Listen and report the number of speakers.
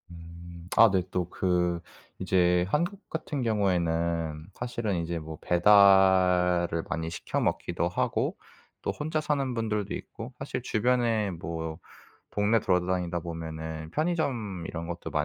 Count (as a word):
one